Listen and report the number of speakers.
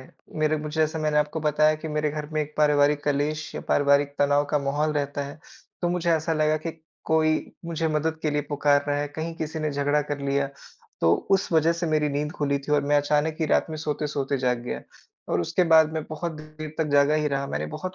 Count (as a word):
one